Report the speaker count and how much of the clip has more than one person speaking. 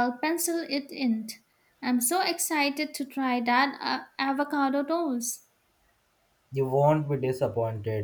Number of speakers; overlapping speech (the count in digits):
2, no overlap